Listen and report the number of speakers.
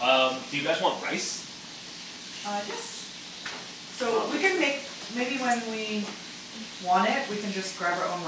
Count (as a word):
two